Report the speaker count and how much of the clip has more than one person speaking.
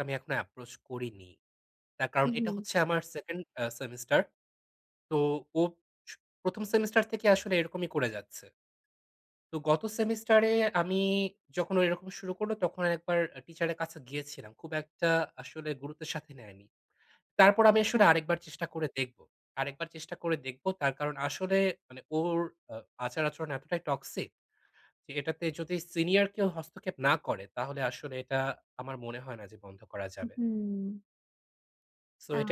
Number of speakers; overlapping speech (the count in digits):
2, about 2%